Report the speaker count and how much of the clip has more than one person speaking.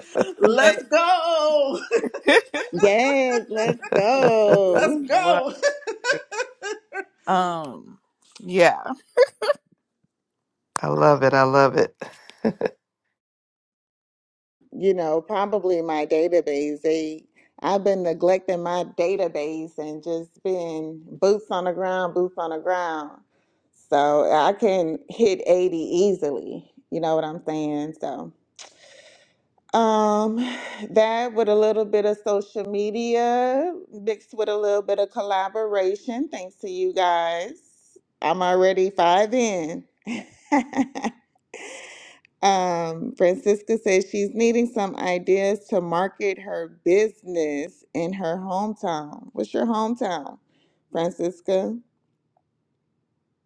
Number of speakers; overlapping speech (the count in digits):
4, about 2%